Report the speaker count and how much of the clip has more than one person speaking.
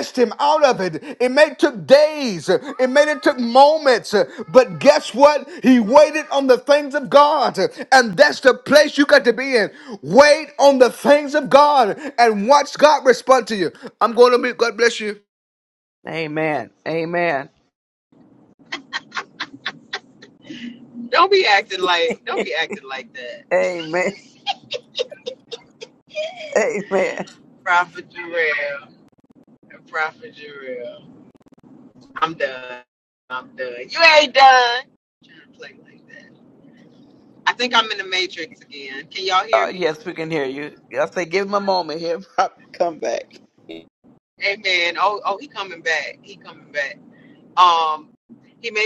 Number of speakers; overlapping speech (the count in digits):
3, about 1%